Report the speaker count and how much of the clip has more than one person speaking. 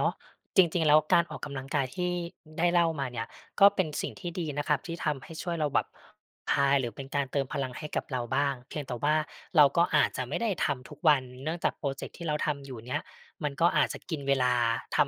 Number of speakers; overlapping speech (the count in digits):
1, no overlap